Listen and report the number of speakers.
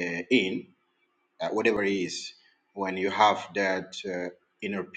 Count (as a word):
one